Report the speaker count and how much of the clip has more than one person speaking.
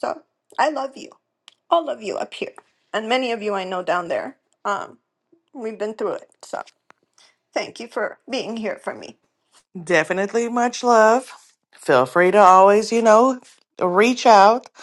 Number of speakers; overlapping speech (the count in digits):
2, no overlap